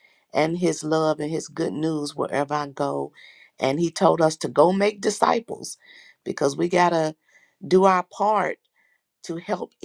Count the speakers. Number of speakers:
one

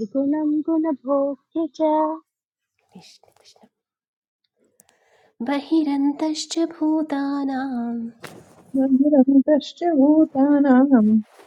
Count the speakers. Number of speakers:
three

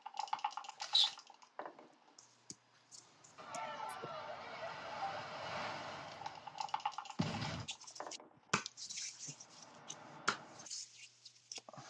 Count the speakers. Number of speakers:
zero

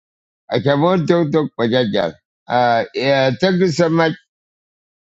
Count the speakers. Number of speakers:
one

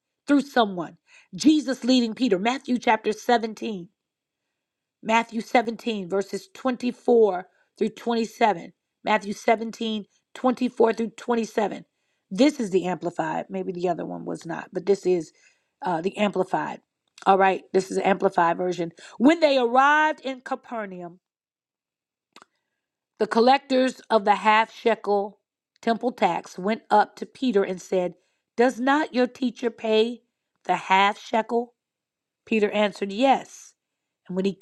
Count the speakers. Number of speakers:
one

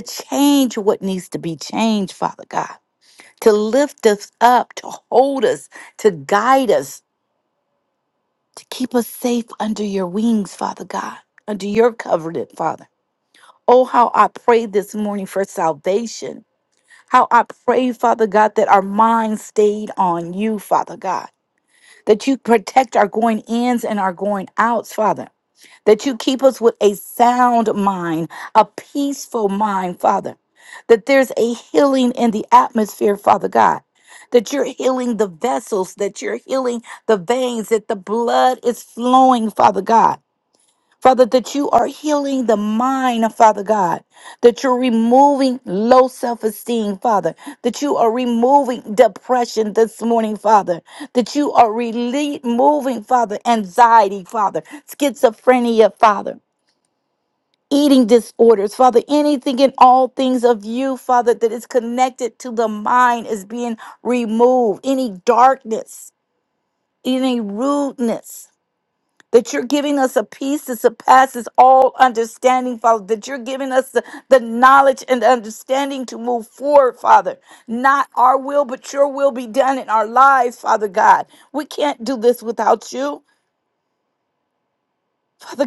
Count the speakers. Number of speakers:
one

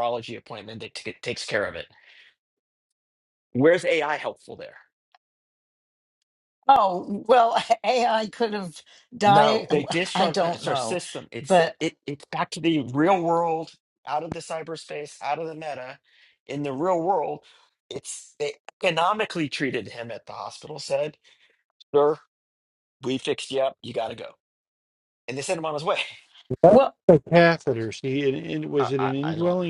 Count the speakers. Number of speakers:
three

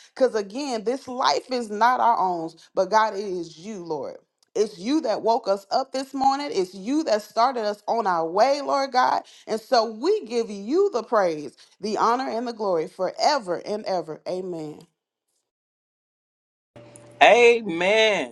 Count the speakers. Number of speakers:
two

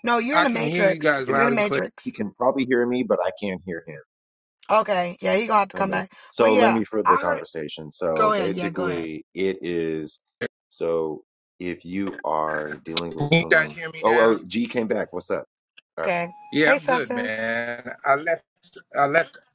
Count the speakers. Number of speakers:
three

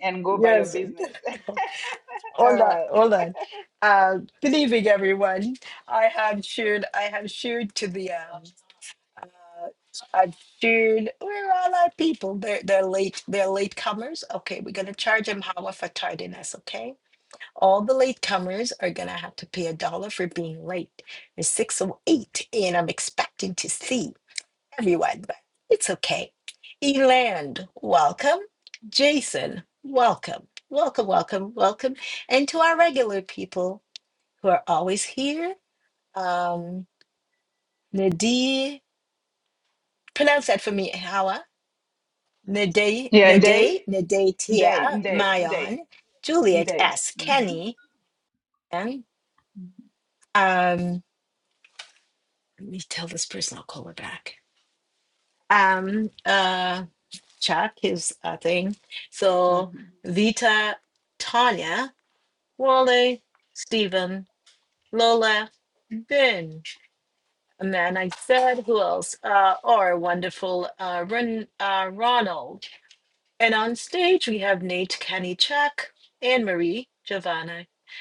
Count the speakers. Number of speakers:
two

